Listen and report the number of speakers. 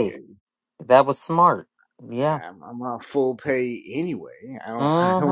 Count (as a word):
two